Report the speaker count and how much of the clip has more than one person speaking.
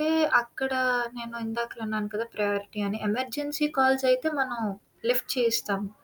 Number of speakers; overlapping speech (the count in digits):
1, no overlap